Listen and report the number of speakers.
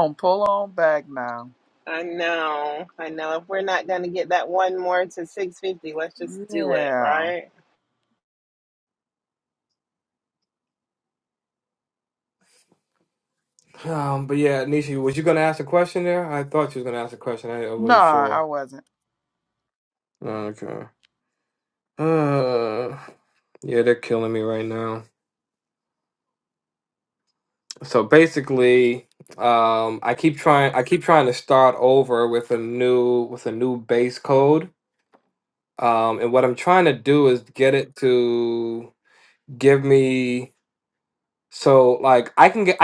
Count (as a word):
three